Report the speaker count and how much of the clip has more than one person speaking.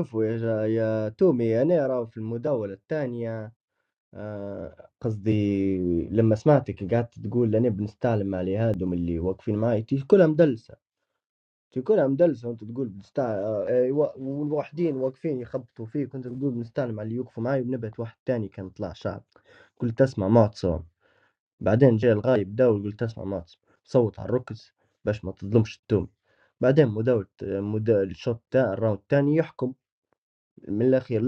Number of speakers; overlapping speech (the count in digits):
1, no overlap